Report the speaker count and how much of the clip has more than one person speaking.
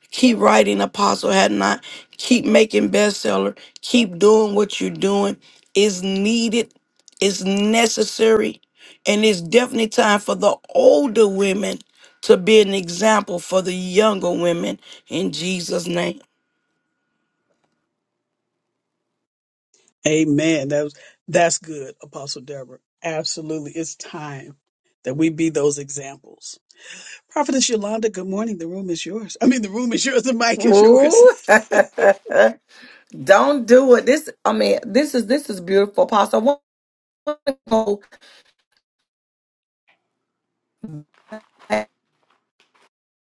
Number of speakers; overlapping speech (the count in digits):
3, about 2%